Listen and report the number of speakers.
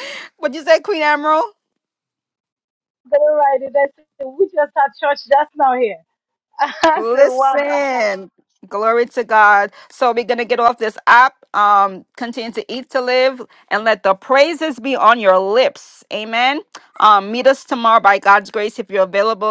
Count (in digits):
2